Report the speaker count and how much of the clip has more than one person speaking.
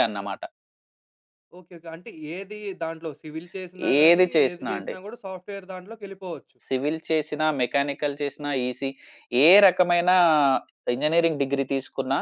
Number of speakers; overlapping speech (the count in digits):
2, about 8%